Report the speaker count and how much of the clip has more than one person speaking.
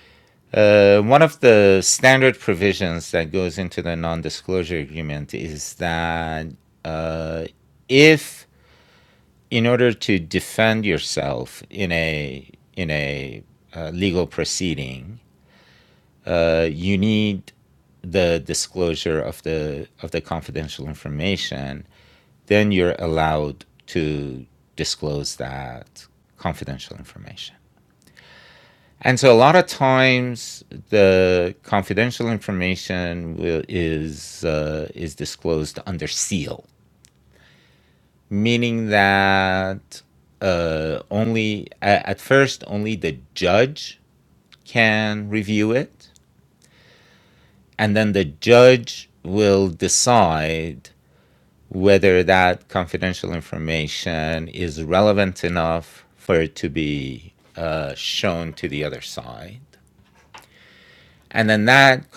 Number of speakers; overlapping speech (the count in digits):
1, no overlap